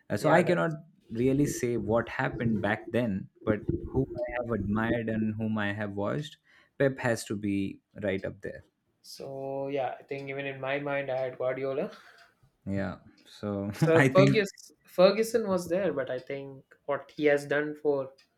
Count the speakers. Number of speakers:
2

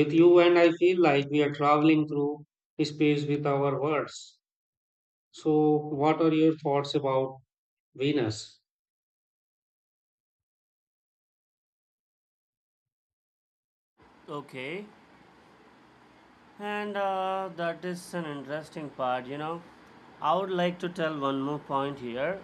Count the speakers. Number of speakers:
2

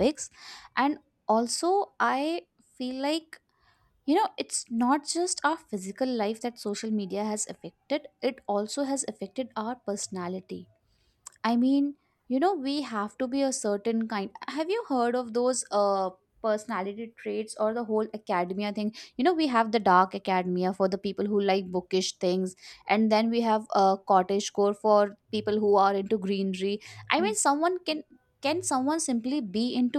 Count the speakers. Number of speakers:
1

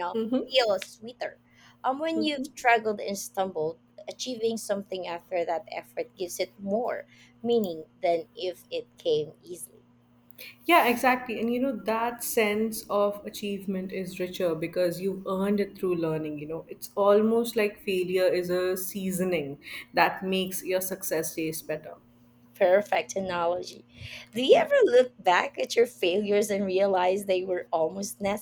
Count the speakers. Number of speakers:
2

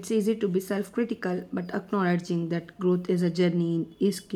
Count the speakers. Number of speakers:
1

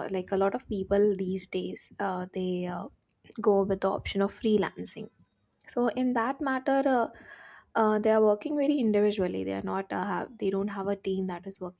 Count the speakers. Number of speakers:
1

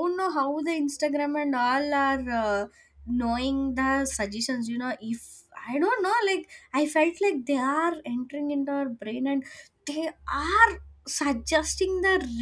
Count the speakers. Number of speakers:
1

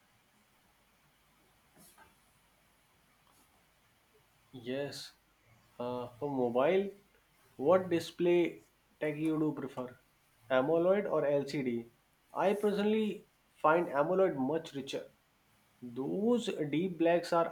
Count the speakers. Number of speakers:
1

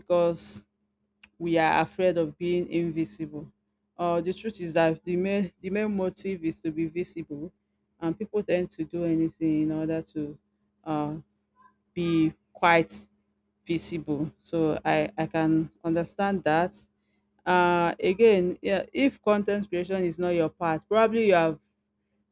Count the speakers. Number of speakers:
1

